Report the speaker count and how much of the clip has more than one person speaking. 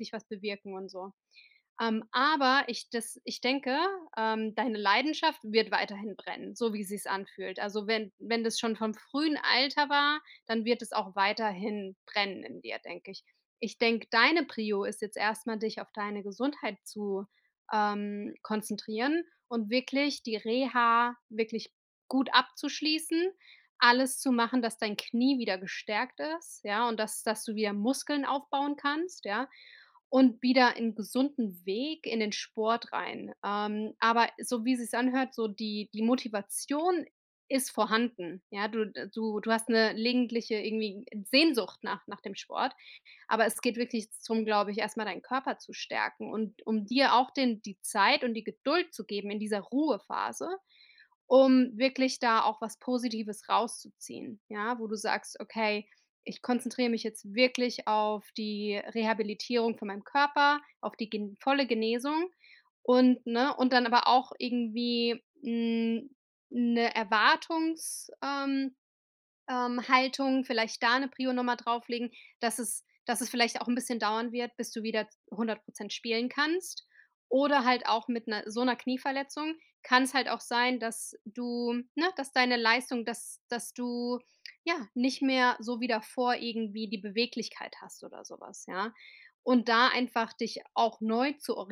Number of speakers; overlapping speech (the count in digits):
1, no overlap